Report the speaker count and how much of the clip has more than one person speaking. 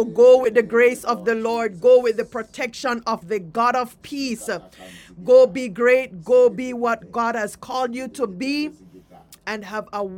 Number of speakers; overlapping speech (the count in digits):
1, no overlap